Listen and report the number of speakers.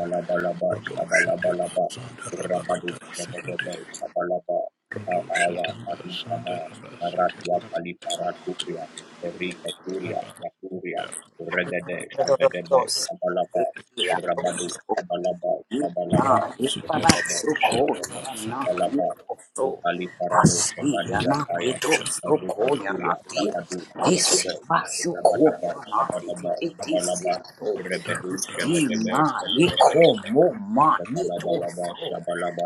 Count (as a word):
three